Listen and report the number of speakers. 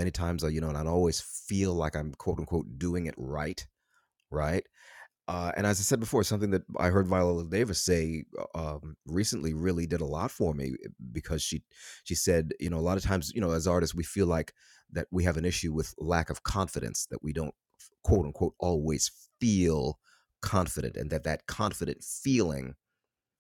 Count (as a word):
one